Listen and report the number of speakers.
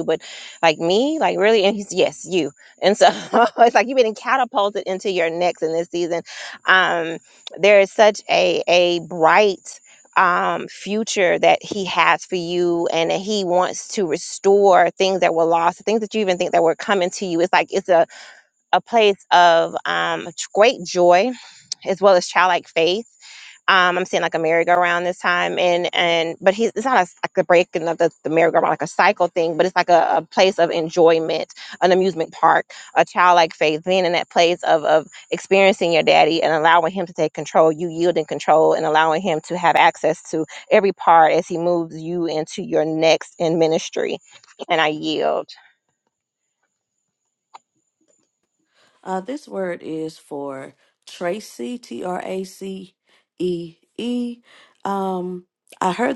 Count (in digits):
2